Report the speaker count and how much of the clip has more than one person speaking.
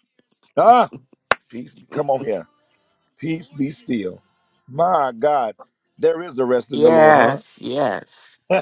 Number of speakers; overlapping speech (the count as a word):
two, about 8%